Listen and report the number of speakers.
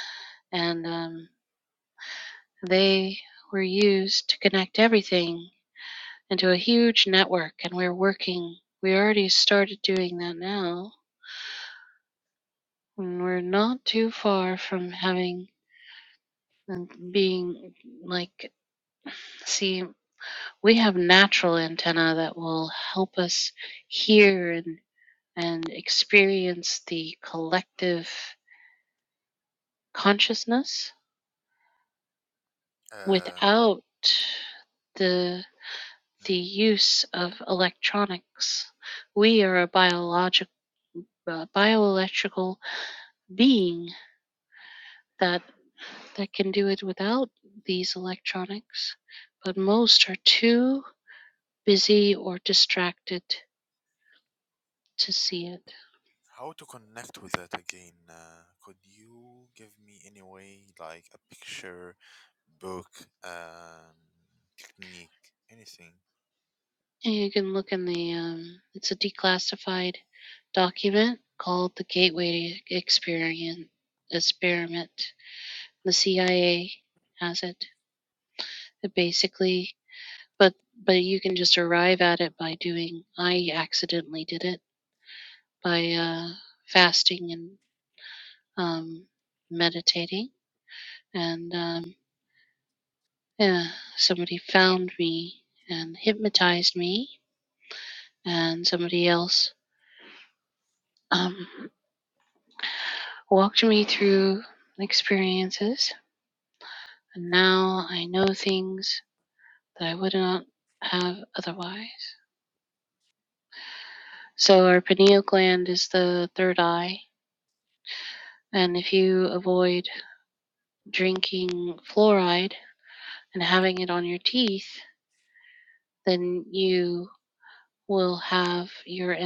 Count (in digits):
2